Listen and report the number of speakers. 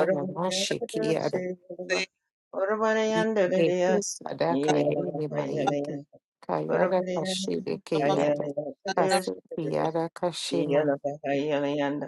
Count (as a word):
two